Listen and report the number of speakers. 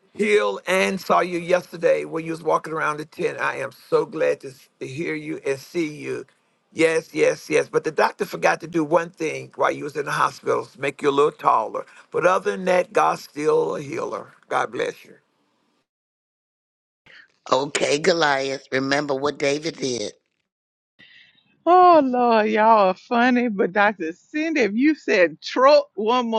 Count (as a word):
three